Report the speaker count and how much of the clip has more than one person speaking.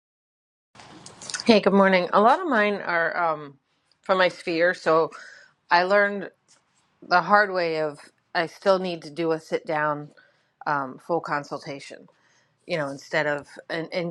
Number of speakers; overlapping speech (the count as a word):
one, no overlap